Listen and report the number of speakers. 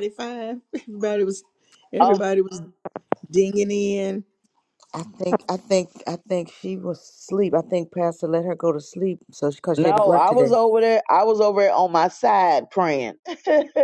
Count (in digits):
3